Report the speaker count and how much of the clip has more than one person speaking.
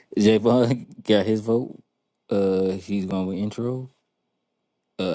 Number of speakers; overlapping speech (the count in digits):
1, no overlap